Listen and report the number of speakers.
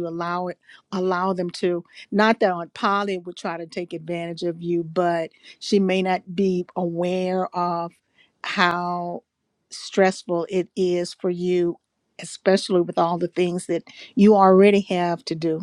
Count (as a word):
one